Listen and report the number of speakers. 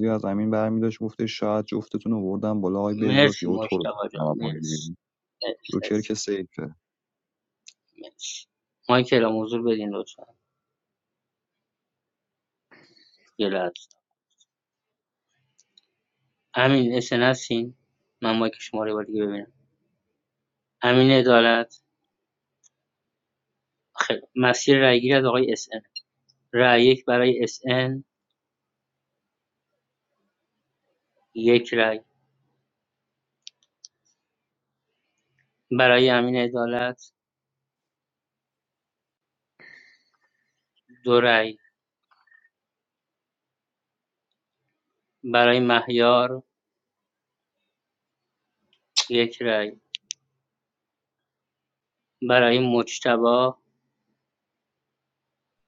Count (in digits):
2